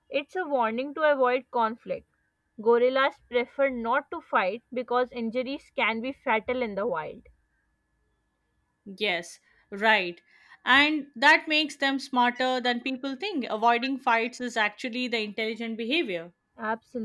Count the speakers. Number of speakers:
2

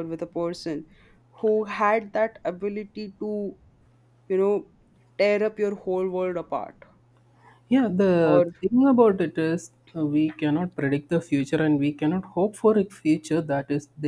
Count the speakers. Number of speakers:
2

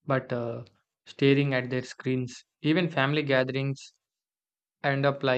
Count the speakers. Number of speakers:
1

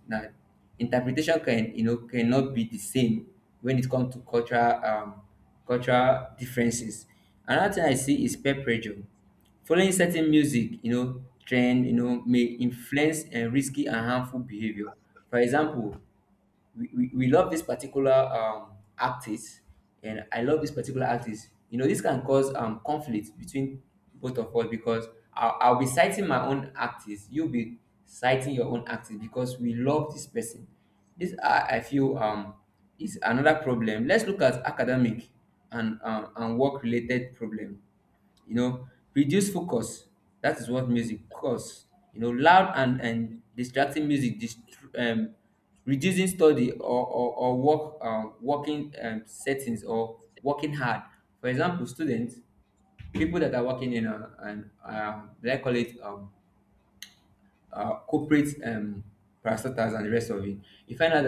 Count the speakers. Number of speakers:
1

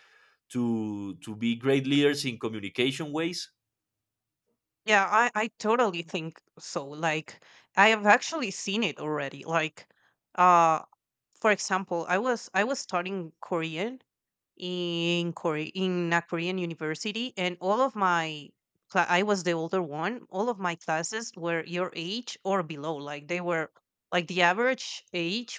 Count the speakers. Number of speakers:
2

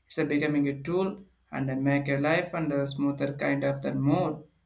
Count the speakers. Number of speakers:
1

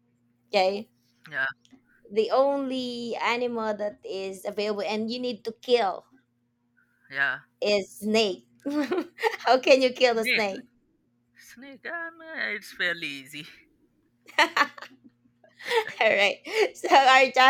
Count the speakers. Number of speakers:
2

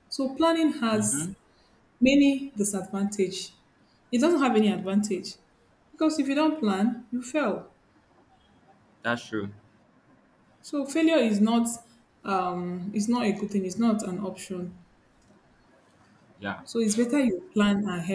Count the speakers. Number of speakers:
2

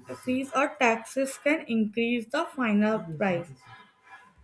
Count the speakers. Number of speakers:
1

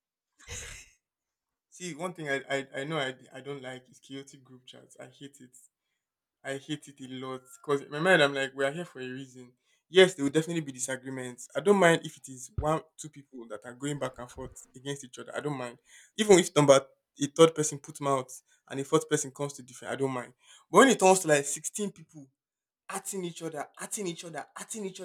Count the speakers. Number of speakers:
1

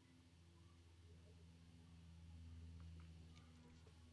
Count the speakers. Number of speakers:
0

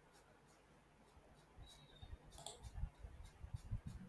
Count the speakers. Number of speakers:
0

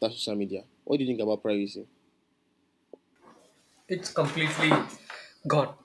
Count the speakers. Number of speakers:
2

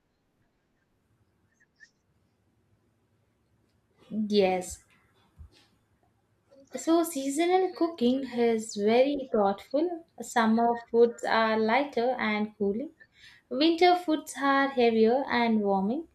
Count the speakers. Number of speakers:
1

